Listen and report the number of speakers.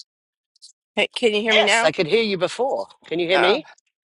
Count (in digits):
2